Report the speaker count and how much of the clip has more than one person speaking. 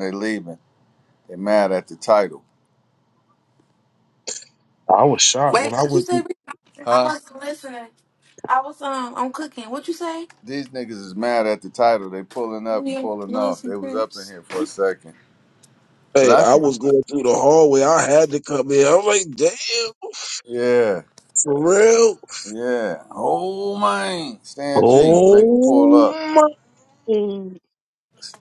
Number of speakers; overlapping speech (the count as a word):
three, about 15%